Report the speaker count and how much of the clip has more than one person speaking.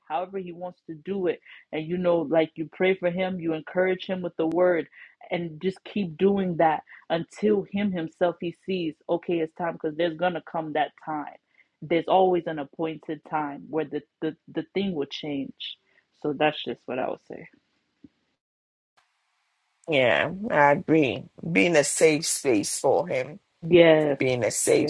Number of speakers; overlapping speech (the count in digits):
2, under 1%